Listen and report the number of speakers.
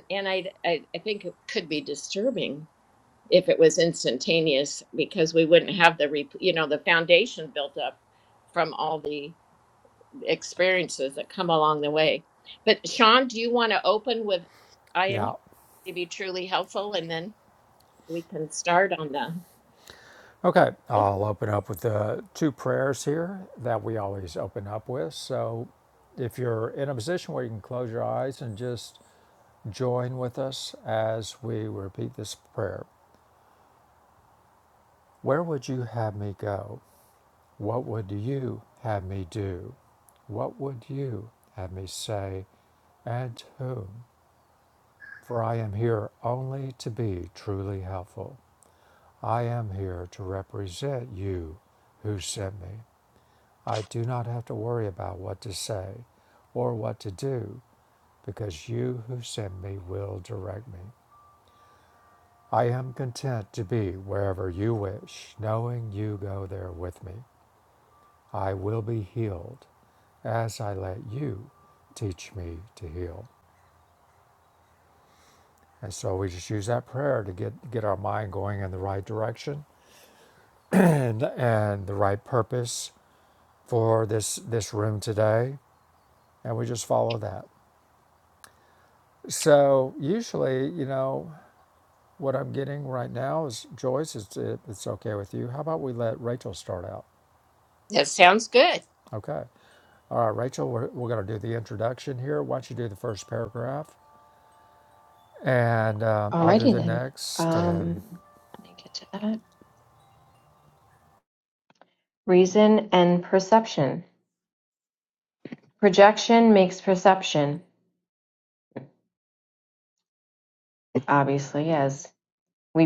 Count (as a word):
three